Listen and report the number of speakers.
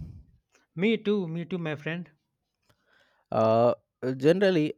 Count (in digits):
2